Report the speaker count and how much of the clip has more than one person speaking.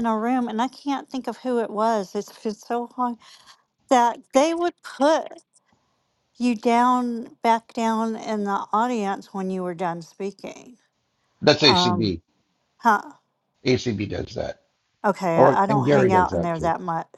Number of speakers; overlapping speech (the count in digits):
2, about 11%